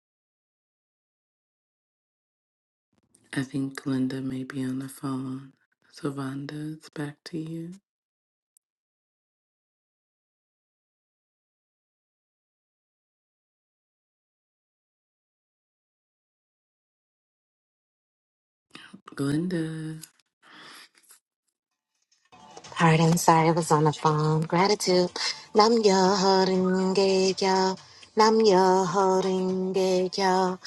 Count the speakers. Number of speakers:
2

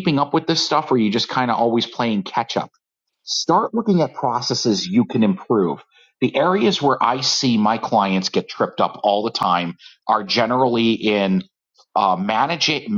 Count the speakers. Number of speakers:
1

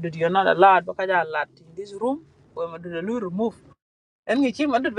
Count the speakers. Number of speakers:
1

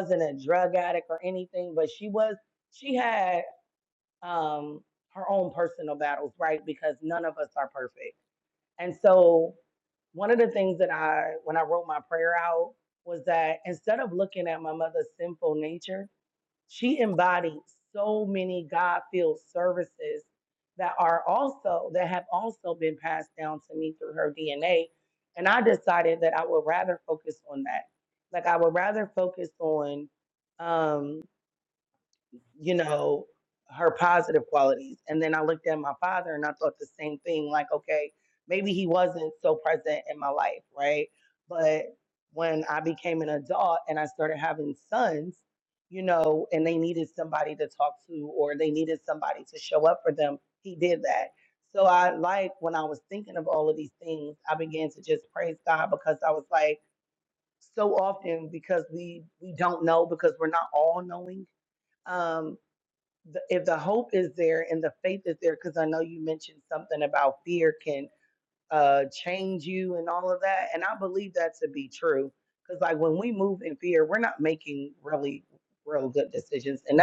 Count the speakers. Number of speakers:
1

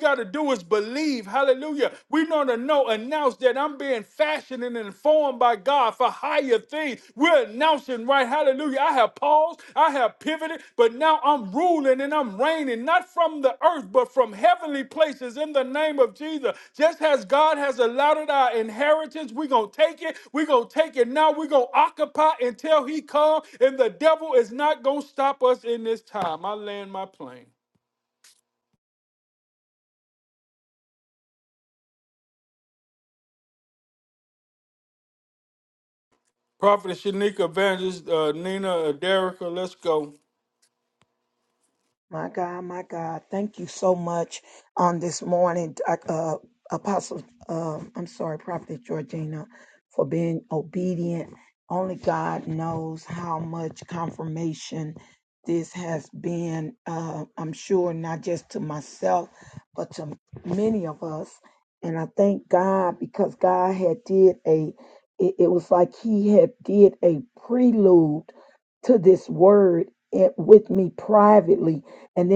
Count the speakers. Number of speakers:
2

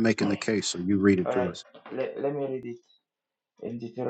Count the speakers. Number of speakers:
2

